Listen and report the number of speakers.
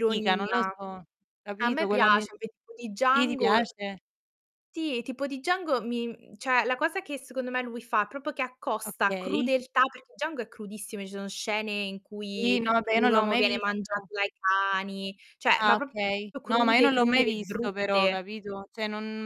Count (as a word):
two